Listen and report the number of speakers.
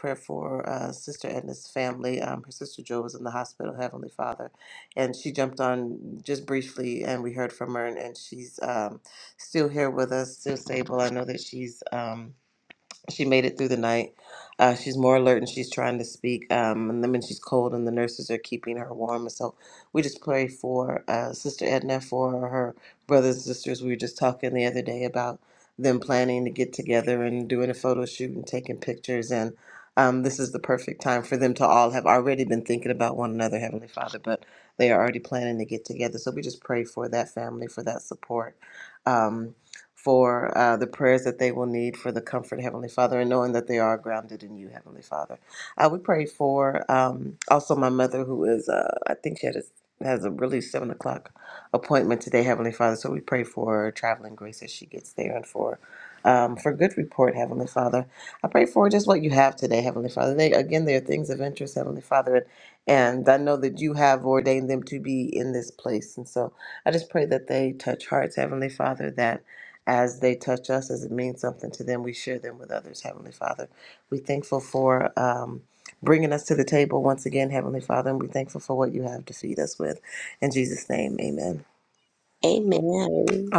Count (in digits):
2